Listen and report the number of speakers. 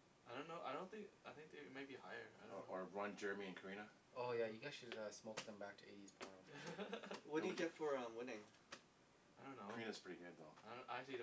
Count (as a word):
four